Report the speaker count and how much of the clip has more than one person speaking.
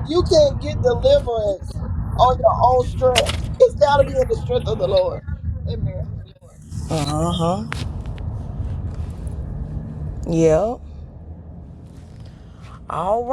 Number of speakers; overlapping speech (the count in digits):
2, no overlap